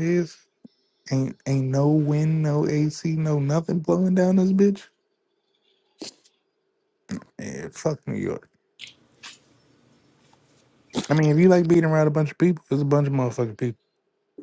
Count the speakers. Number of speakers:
1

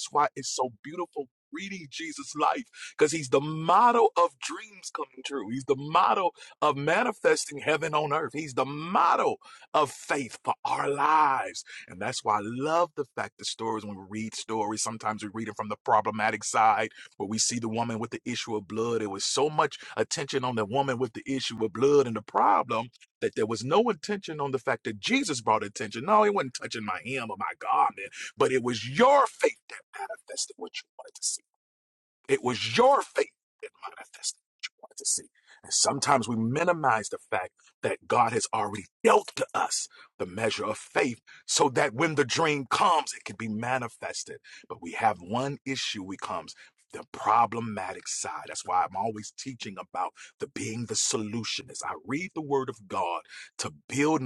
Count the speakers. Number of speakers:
1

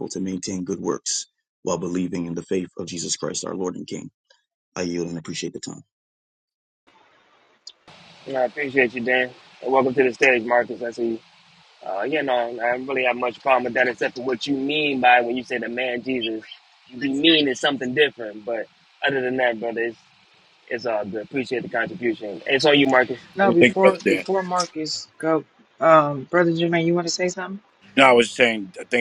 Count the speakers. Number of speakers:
4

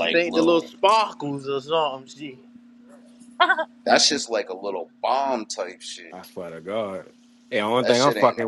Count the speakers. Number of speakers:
3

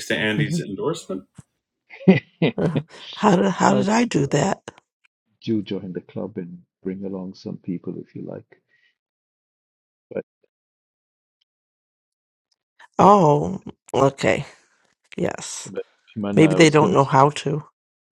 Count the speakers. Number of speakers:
3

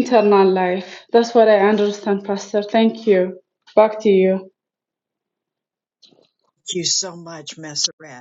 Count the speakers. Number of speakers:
2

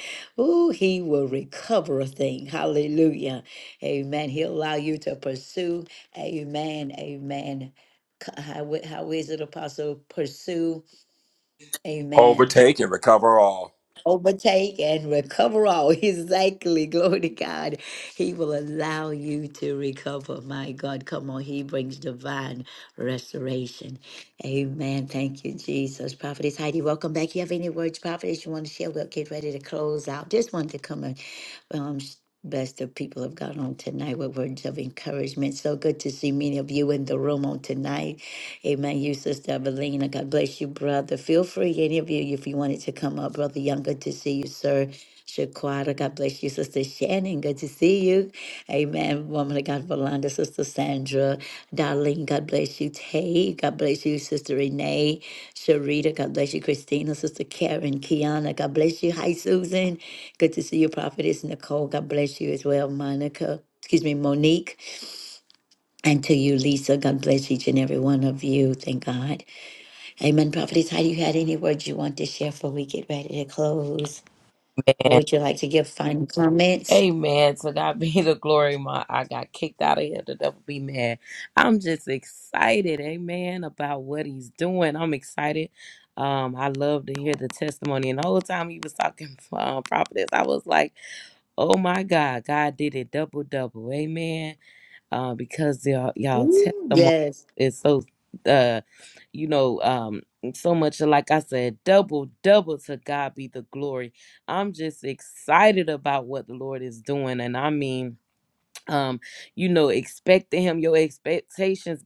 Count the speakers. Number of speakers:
3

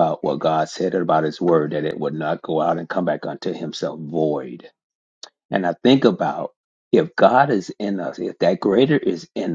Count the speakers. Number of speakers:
1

